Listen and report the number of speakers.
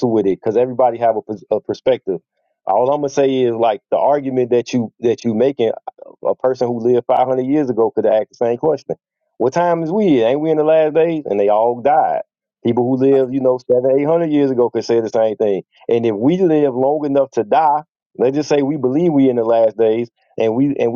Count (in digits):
1